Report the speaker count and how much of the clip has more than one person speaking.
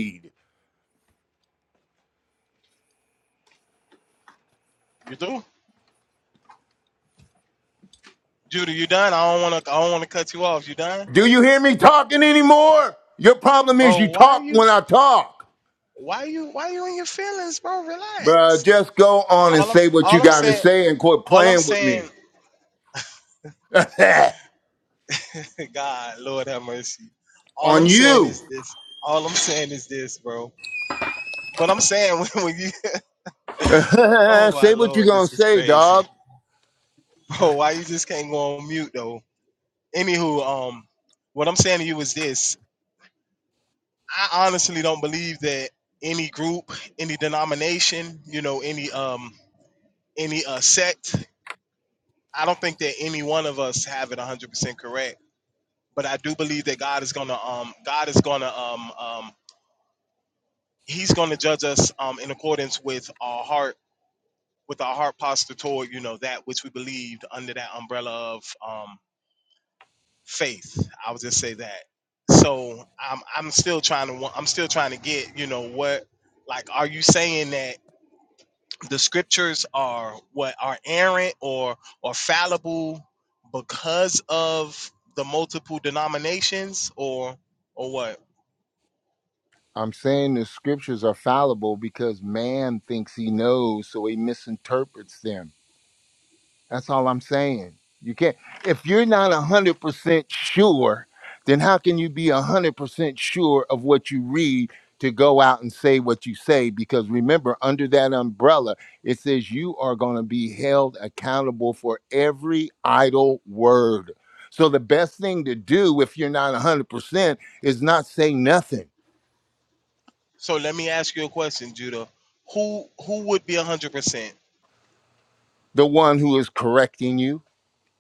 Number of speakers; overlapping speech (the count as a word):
two, about 4%